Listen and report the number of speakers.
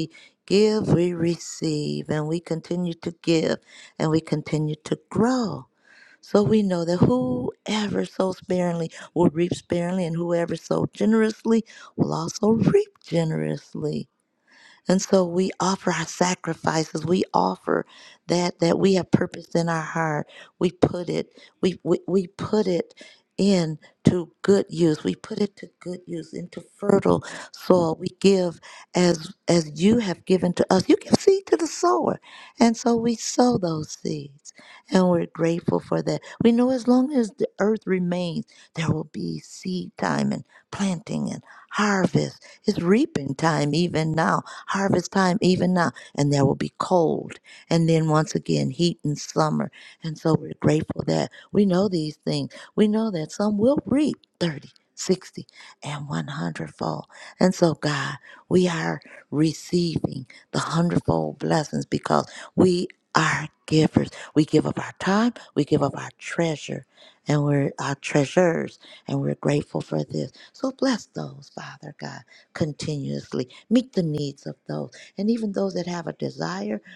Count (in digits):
1